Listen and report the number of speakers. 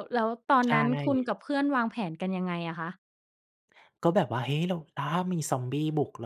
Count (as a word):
two